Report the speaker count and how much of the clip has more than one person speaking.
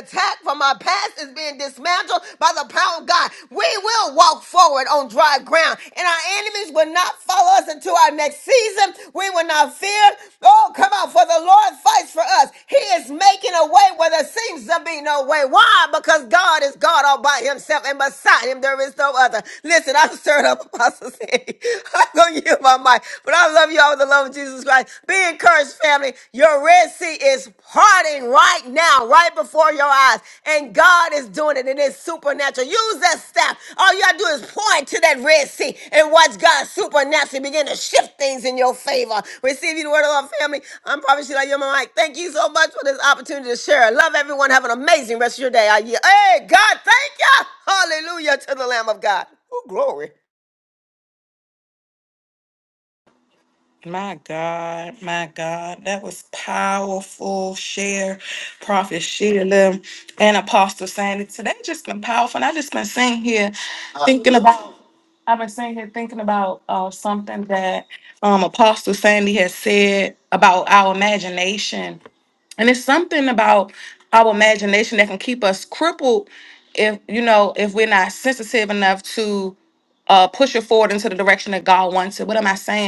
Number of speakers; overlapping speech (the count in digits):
2, no overlap